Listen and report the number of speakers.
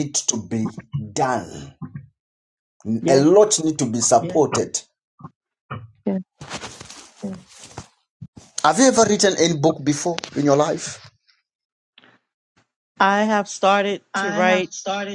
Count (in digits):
2